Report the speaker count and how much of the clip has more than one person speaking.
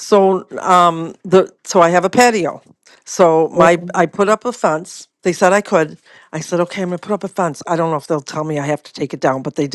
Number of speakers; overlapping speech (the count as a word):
one, no overlap